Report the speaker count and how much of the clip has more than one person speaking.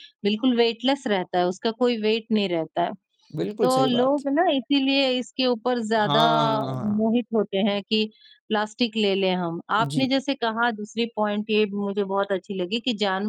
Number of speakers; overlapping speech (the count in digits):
2, about 9%